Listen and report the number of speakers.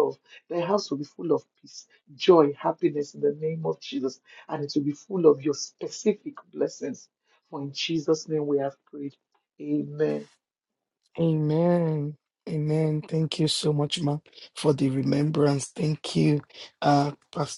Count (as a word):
two